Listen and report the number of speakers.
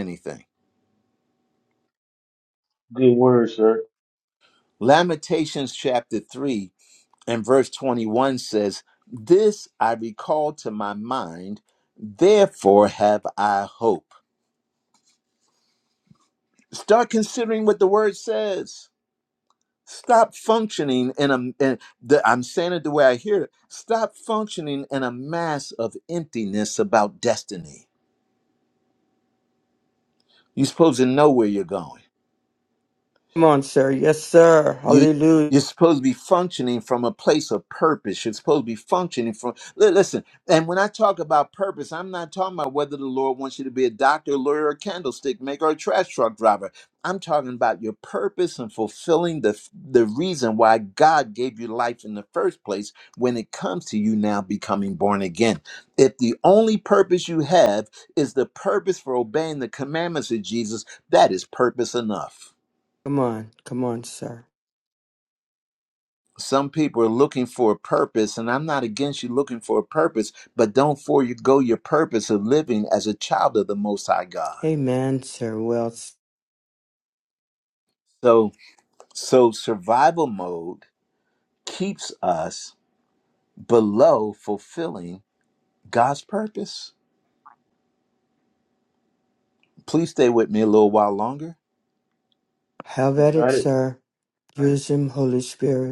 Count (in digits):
3